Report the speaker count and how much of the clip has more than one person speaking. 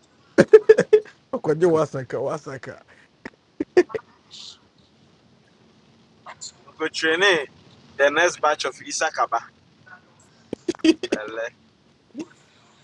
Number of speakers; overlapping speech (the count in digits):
2, no overlap